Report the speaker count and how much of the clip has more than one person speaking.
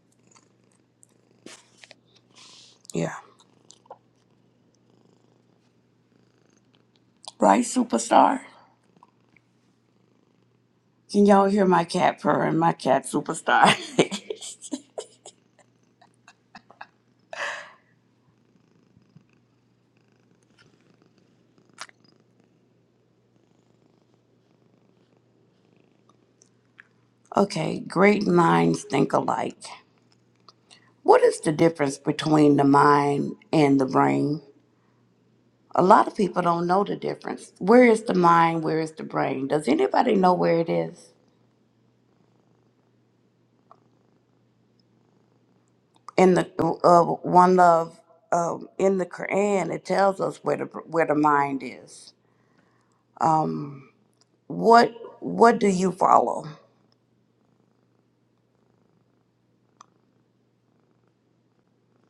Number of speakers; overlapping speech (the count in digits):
1, no overlap